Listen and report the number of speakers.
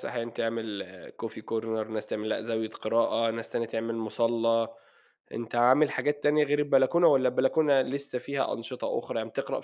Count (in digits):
1